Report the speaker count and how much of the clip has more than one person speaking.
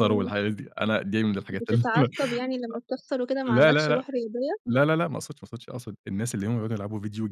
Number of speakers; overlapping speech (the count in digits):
2, about 20%